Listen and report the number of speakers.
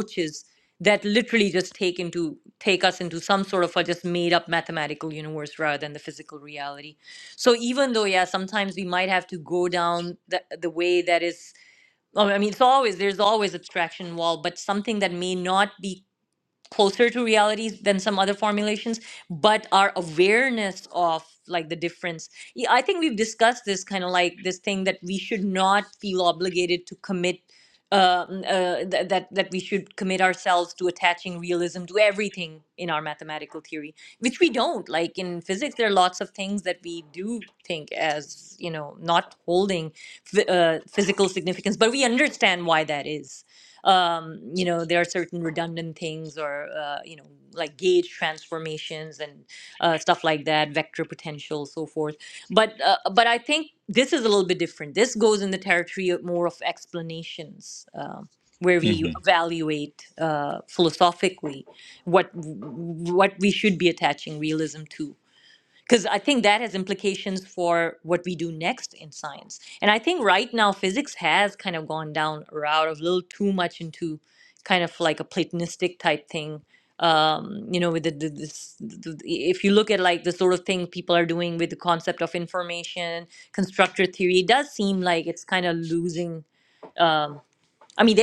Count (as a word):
one